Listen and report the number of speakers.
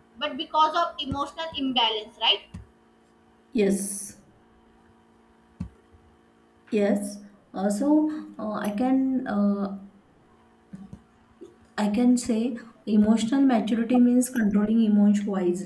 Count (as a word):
two